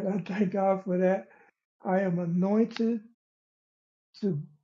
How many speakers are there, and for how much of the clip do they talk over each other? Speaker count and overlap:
one, no overlap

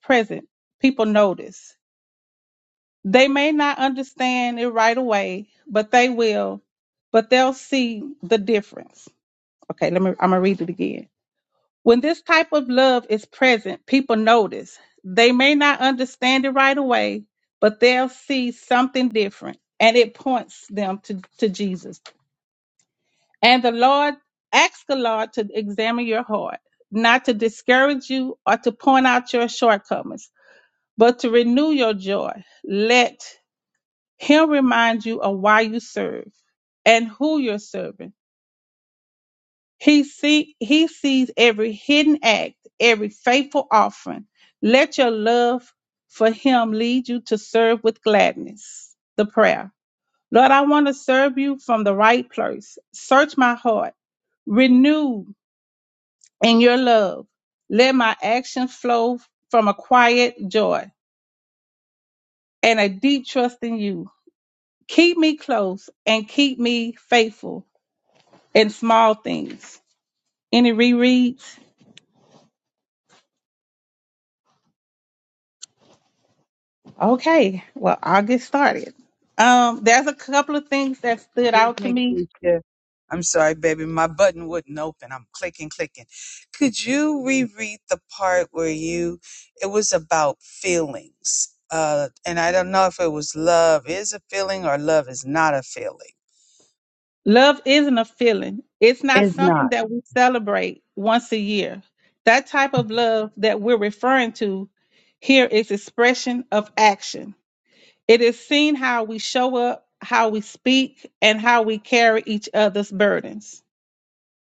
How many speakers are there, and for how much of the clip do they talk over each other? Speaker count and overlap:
two, about 1%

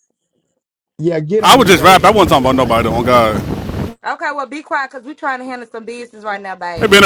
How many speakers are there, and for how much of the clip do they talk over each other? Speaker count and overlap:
three, about 26%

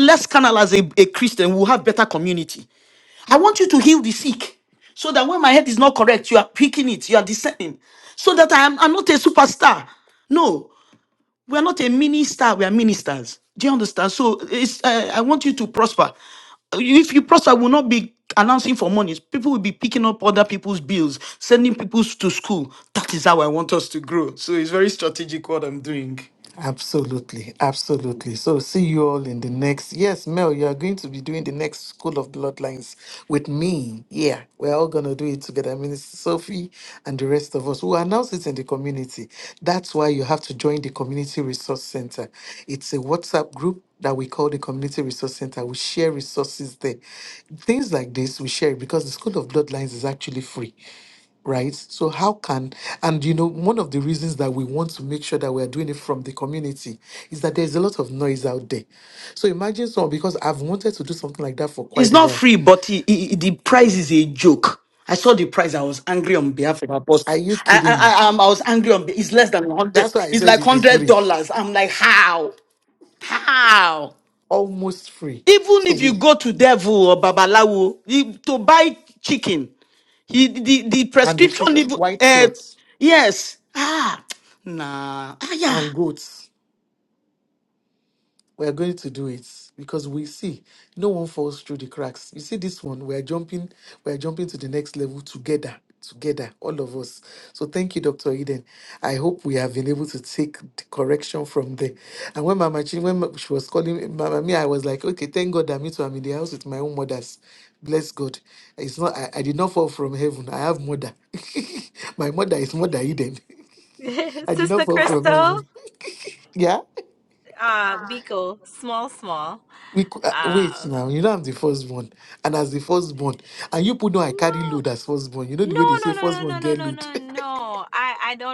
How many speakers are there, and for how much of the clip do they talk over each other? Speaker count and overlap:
three, about 6%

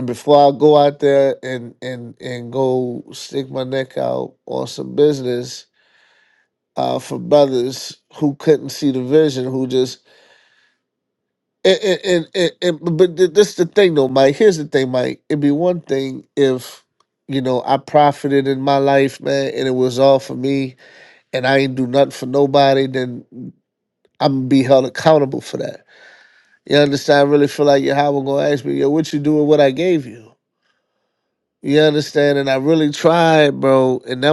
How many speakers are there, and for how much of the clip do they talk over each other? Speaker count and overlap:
one, no overlap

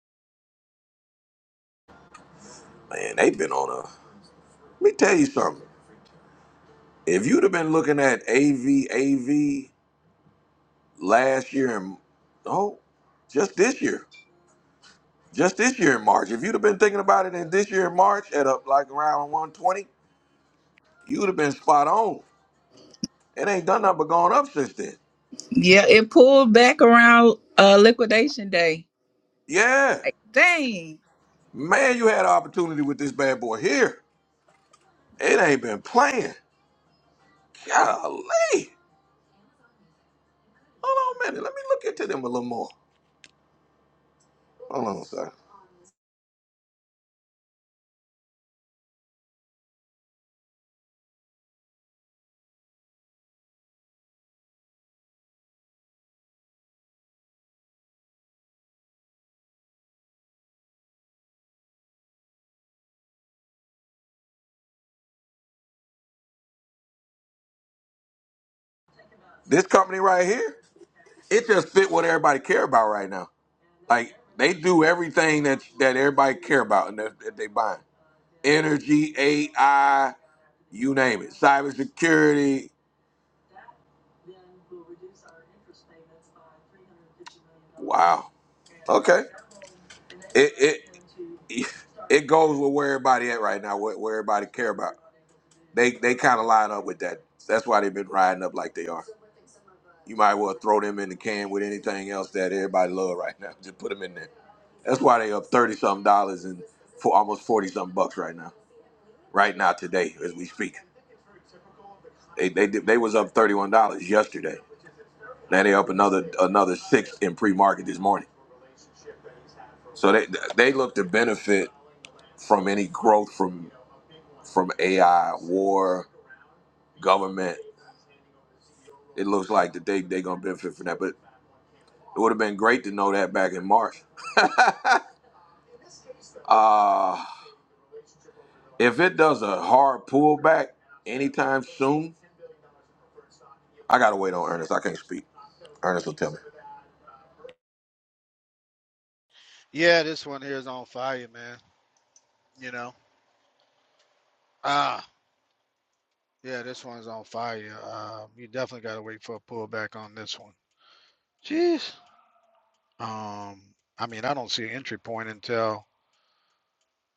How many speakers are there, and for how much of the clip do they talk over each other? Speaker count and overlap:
three, under 1%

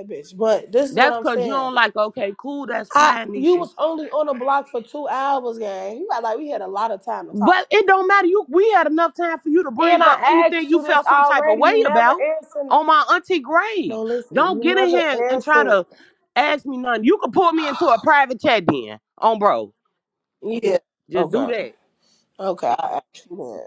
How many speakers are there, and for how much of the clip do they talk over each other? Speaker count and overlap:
two, about 26%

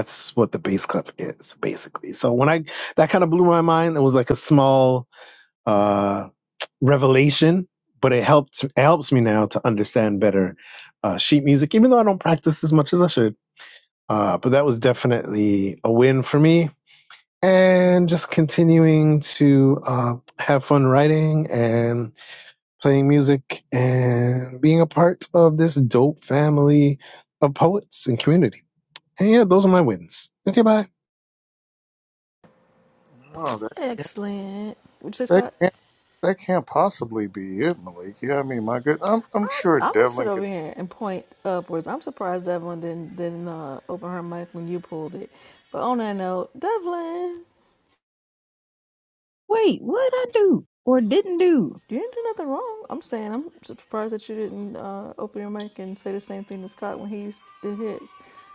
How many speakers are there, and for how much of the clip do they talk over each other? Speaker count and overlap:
four, about 3%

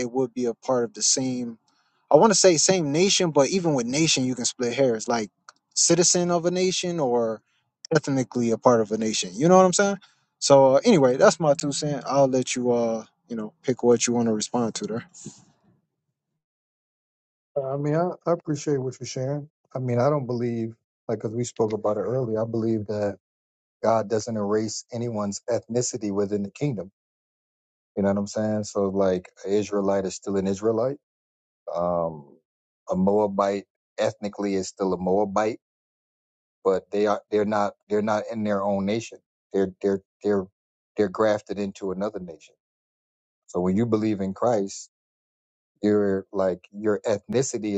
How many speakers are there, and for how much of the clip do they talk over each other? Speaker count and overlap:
two, no overlap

